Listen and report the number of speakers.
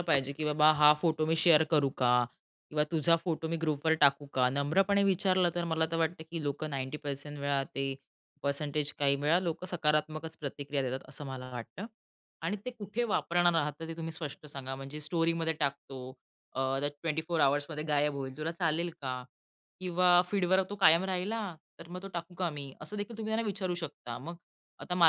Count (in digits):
1